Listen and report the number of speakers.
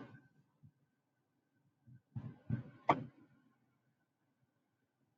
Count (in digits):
0